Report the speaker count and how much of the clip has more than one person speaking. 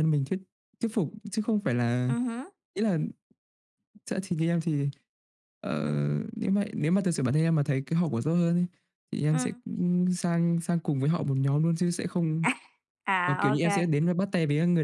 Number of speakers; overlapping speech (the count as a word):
two, about 7%